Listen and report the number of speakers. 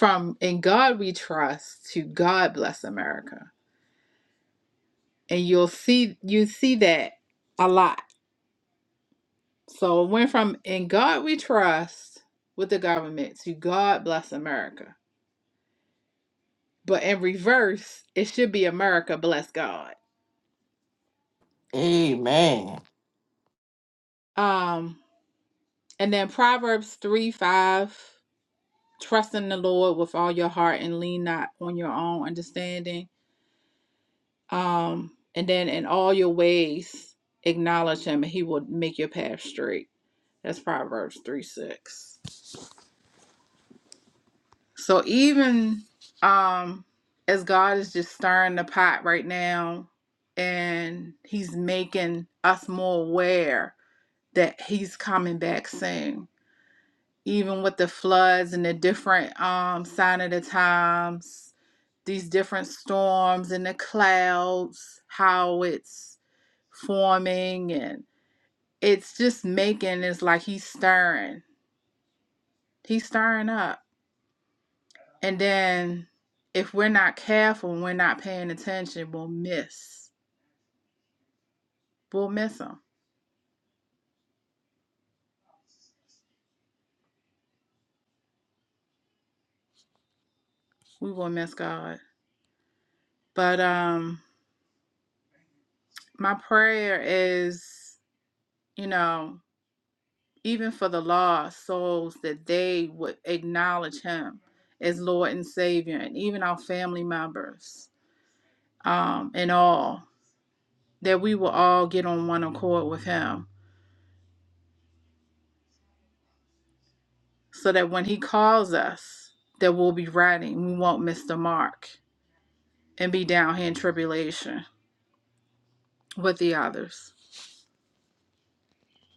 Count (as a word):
two